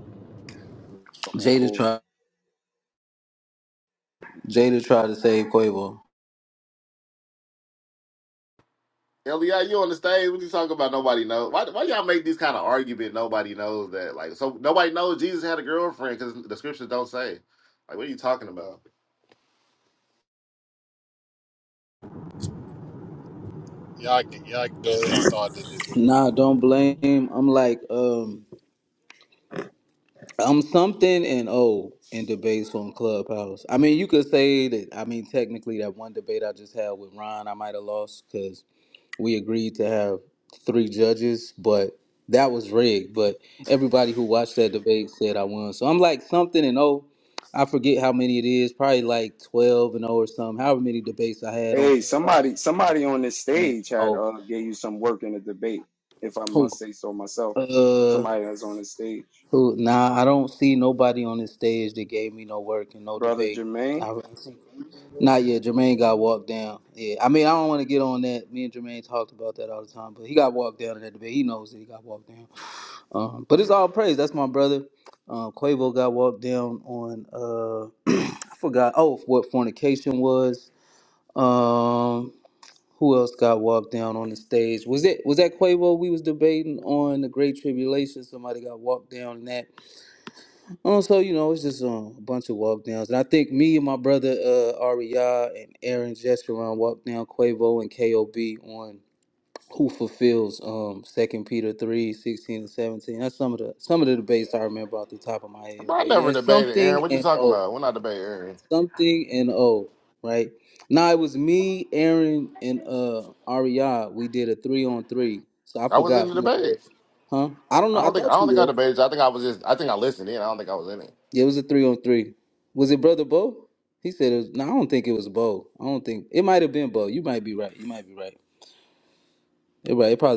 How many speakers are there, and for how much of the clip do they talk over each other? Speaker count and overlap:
four, about 5%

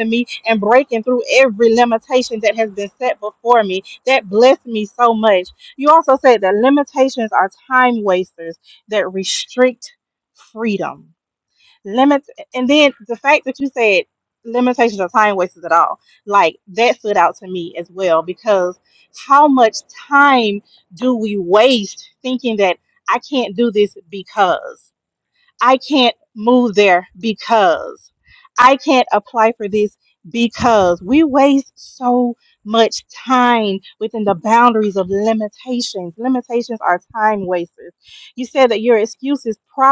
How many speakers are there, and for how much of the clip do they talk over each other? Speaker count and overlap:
one, no overlap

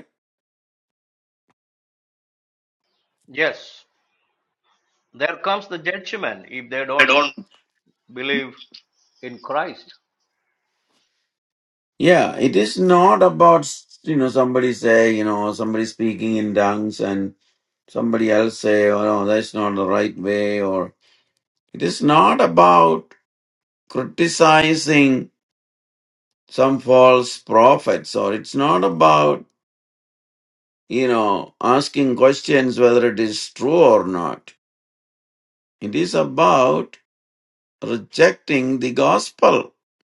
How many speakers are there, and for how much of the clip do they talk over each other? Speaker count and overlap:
two, under 1%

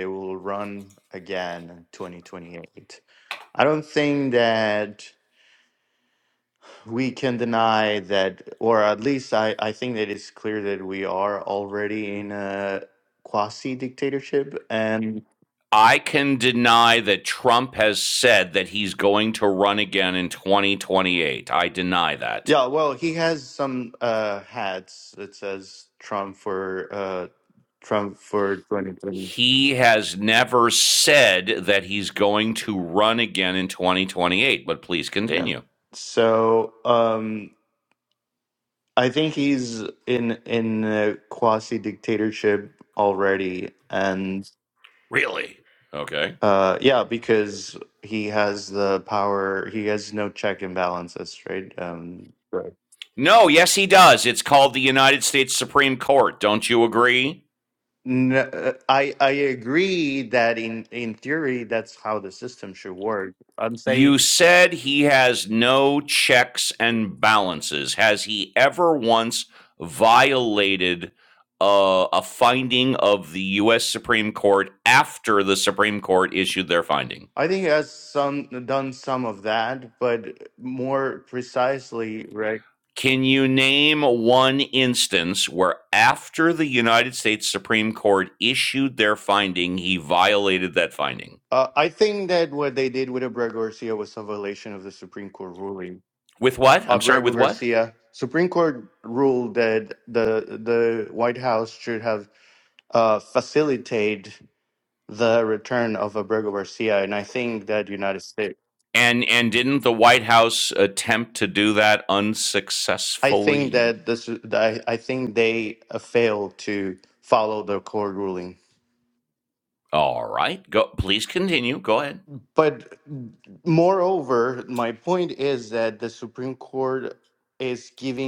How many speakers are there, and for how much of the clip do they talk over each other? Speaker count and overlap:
two, about 1%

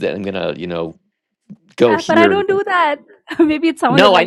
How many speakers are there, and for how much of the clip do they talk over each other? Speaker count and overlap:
two, about 24%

